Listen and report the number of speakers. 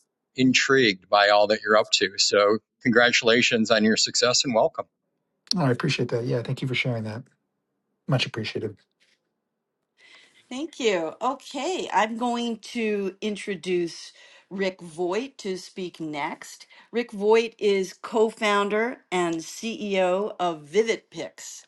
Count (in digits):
3